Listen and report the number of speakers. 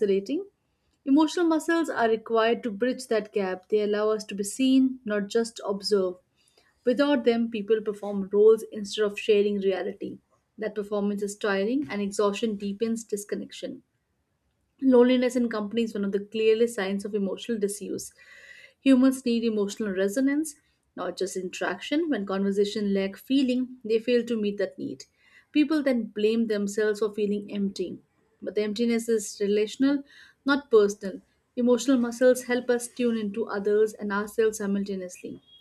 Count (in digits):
1